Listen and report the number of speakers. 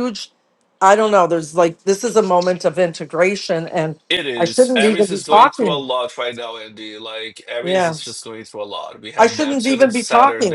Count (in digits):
2